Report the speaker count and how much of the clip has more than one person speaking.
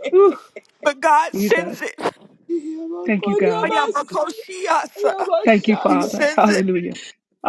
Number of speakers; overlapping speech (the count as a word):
three, about 30%